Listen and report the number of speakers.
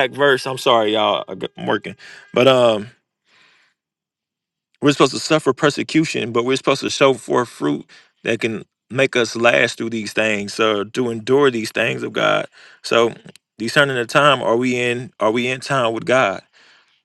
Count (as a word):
one